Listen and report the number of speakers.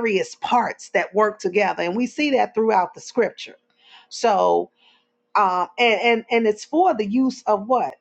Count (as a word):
one